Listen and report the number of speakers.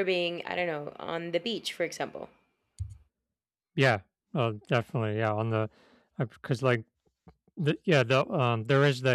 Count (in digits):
2